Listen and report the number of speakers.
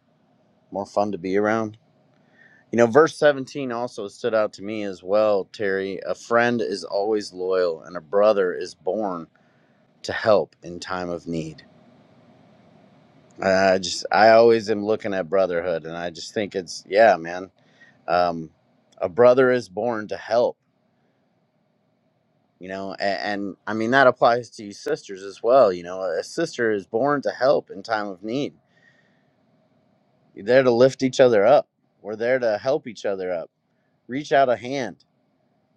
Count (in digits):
1